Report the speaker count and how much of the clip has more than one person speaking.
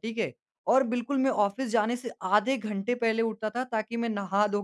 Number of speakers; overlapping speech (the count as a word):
one, no overlap